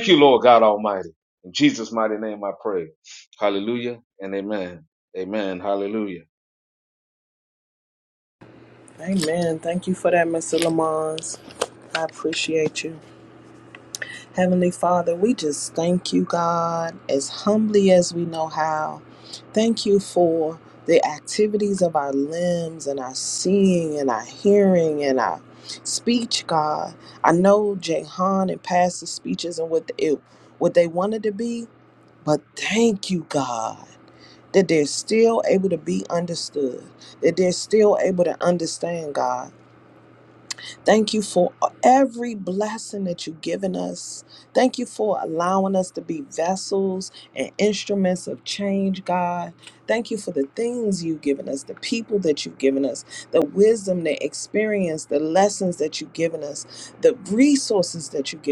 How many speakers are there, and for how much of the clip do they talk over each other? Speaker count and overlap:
two, no overlap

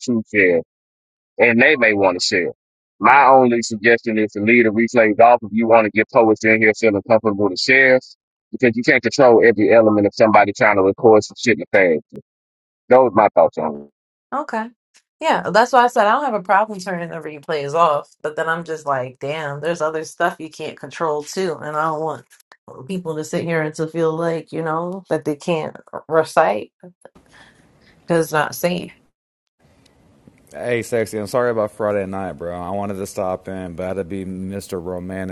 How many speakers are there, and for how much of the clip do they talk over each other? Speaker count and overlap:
three, no overlap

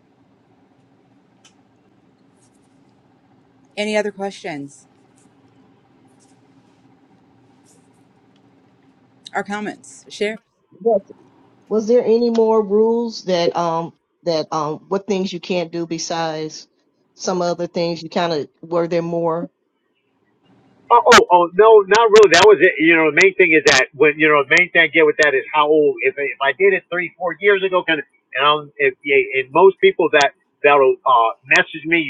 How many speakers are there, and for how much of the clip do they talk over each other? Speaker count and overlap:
three, no overlap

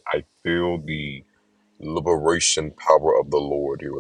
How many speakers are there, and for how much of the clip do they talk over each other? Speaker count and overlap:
one, no overlap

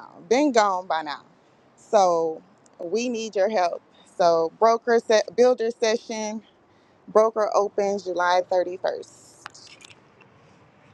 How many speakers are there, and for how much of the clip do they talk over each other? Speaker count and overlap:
one, no overlap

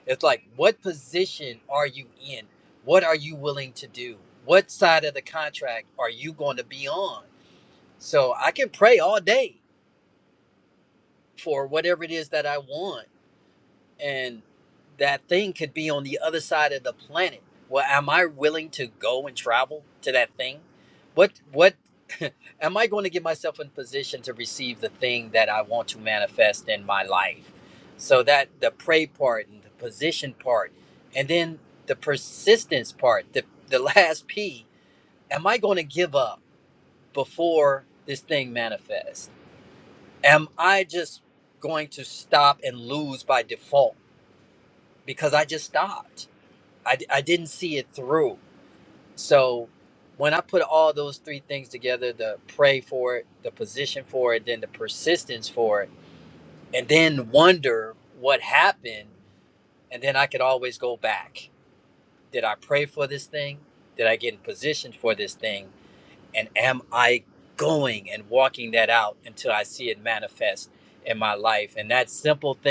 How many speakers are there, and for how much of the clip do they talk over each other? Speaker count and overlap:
one, no overlap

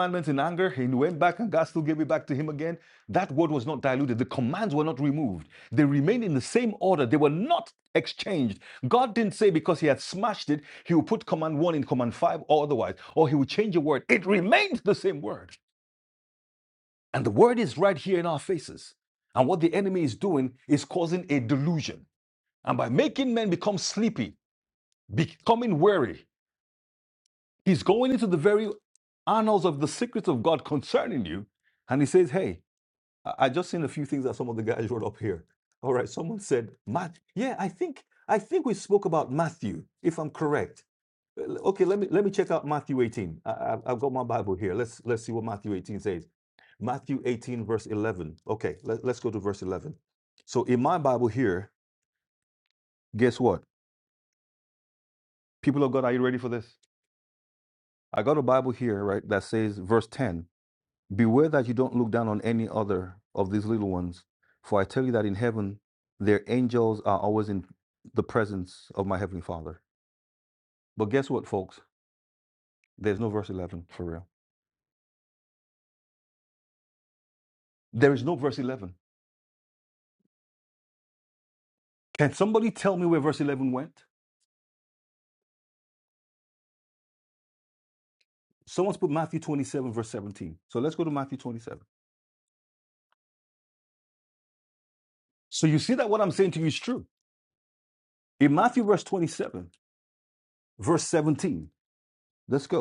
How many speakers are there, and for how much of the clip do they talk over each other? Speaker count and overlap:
one, no overlap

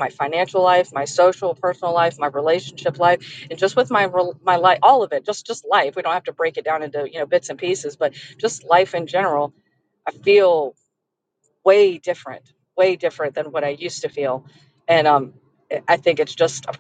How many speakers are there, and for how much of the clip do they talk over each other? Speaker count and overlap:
one, no overlap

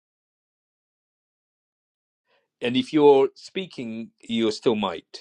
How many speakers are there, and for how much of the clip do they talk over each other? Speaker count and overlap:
one, no overlap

